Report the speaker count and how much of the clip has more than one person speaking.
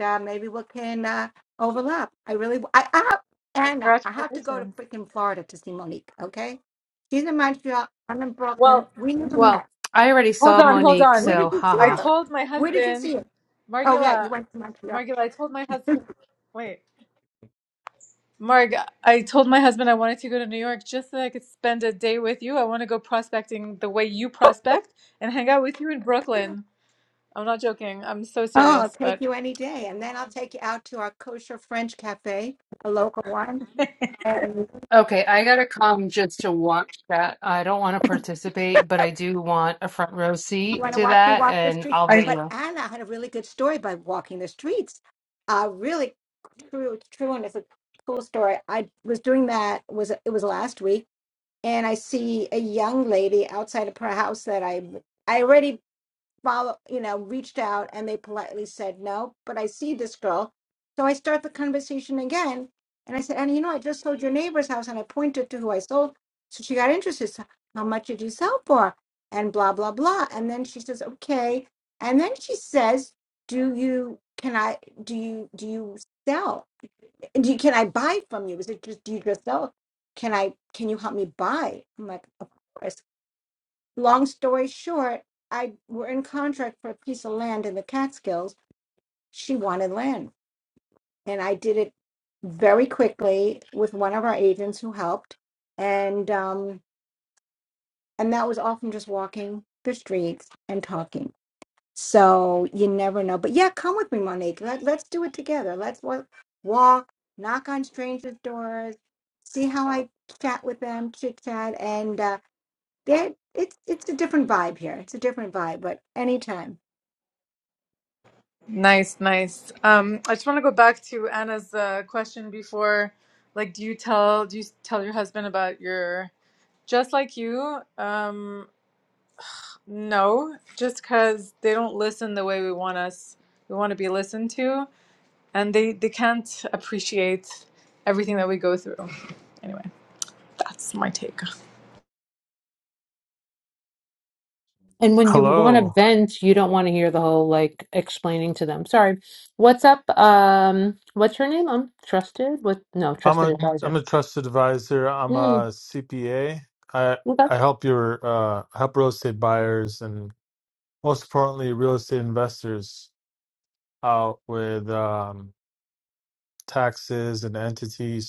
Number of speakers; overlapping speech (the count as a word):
four, about 5%